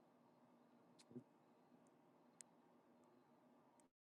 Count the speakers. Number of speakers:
0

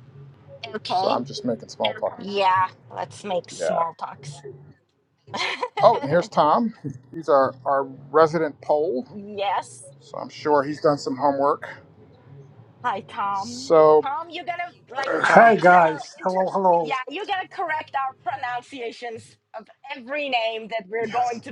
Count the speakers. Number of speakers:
3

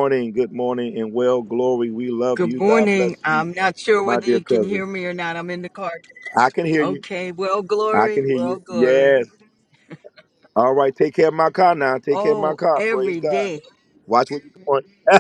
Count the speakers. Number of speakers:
2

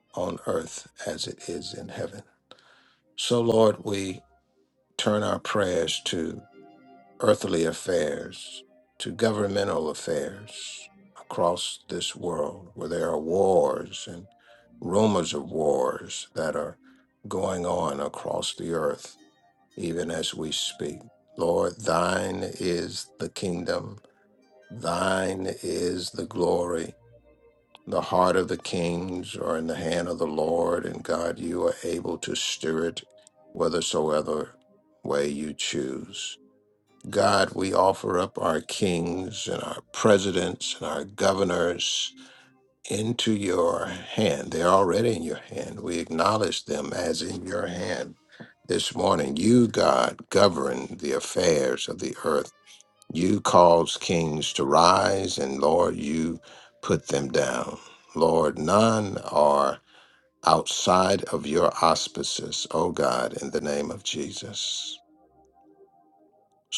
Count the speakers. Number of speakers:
1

